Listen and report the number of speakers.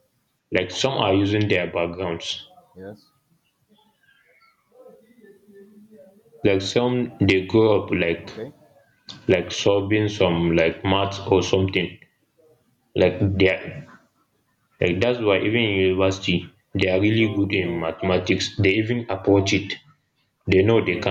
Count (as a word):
two